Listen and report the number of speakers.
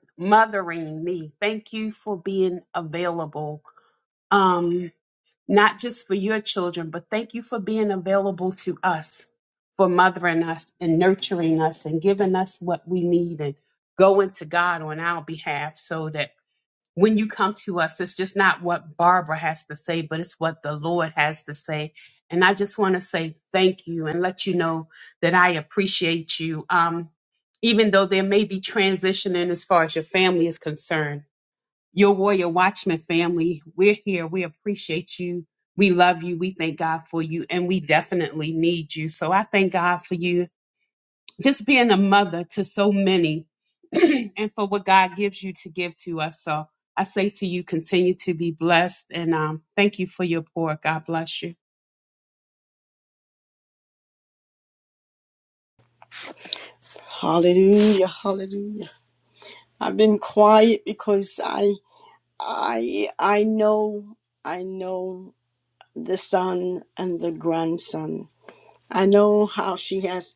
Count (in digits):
2